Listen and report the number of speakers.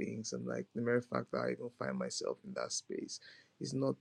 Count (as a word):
one